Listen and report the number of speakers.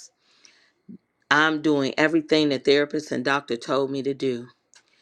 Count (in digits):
1